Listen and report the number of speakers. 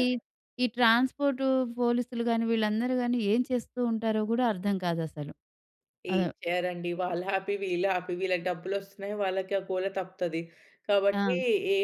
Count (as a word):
two